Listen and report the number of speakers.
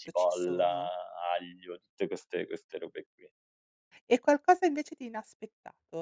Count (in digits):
2